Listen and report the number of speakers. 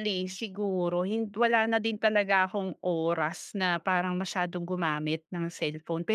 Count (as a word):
one